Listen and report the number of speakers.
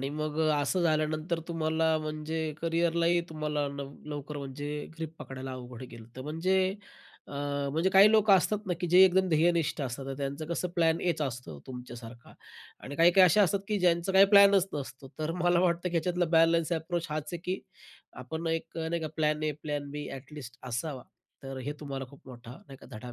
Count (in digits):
1